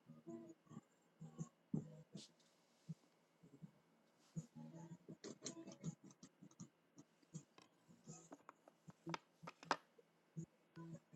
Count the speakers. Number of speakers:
zero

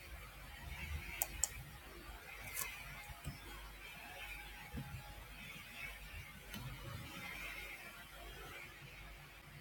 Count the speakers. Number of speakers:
zero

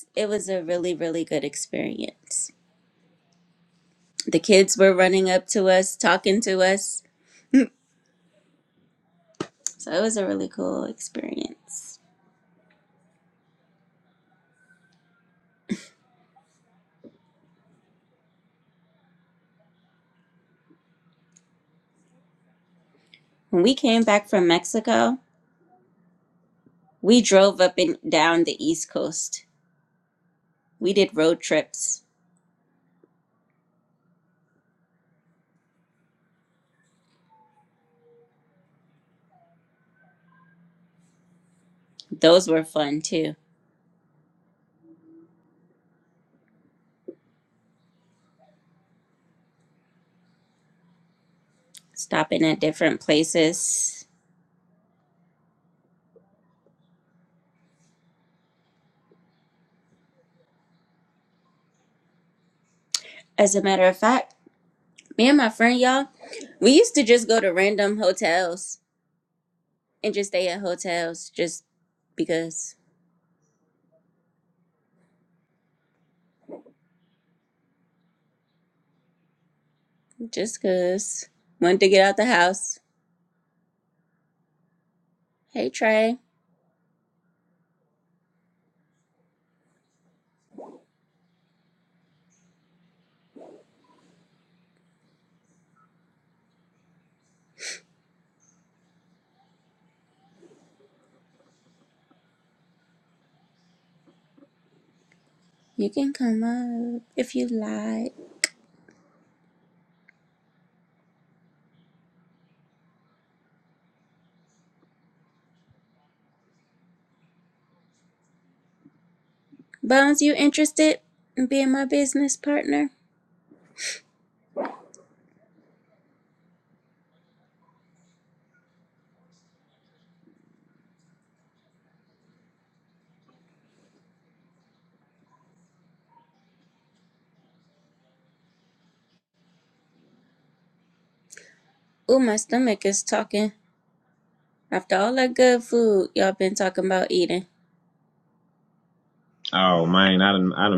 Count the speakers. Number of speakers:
two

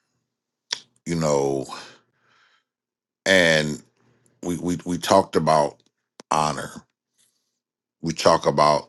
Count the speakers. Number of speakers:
one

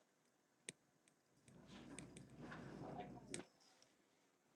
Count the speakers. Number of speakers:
zero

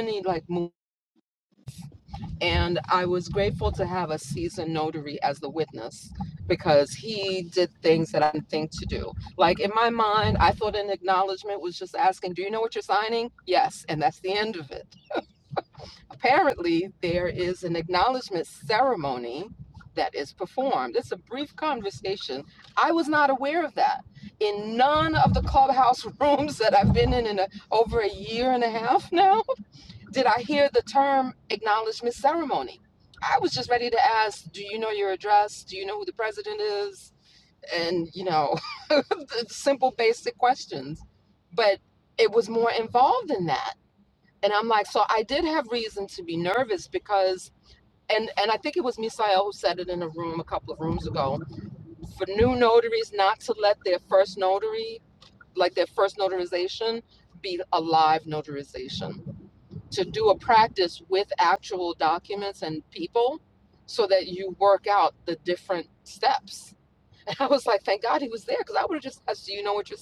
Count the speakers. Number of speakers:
one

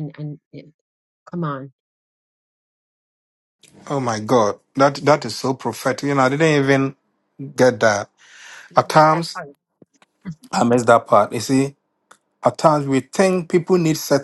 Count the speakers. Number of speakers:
two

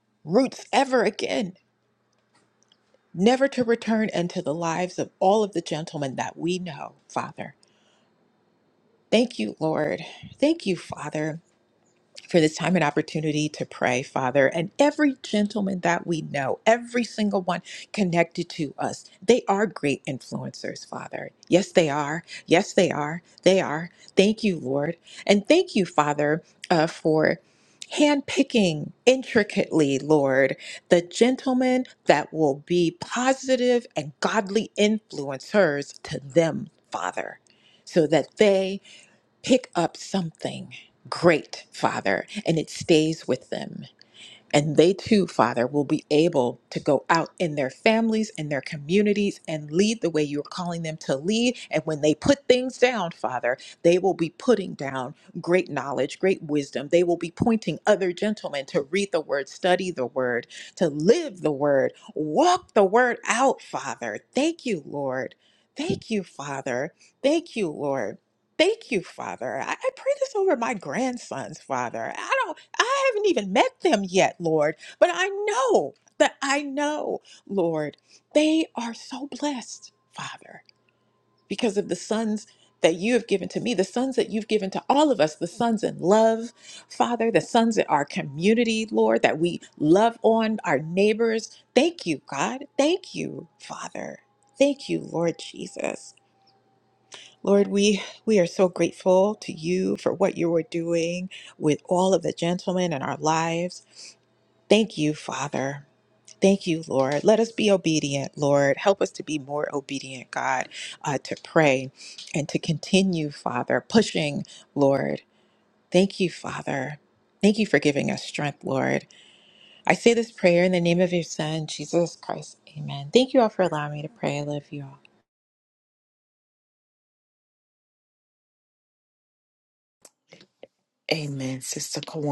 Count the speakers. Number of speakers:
two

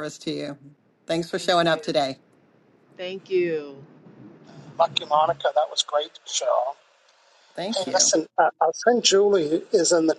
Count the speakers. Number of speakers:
three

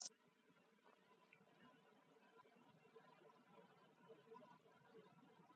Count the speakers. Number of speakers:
zero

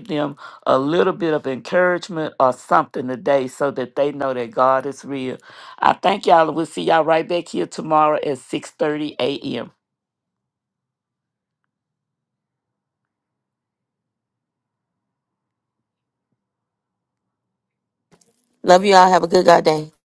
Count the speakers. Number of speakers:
two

